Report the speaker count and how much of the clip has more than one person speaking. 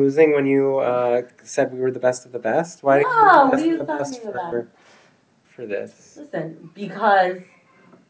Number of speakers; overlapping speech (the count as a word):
two, about 20%